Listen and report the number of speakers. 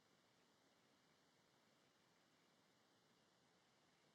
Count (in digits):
0